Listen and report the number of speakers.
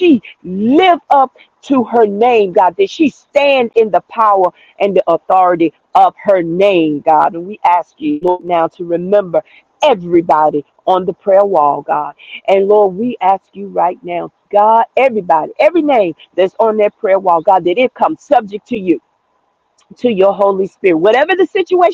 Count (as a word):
one